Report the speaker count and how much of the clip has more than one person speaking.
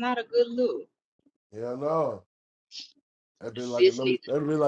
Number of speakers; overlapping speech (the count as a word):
two, about 16%